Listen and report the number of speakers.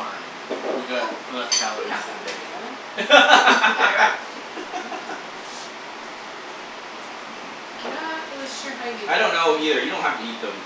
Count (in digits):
3